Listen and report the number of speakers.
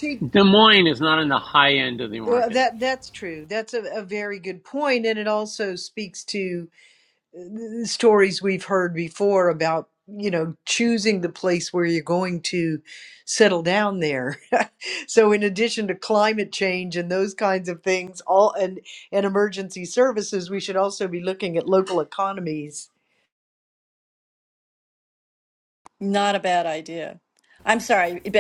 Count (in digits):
3